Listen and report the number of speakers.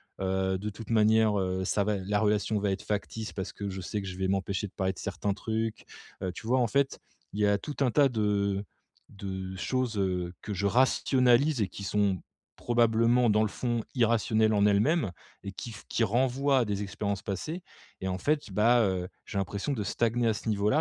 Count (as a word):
one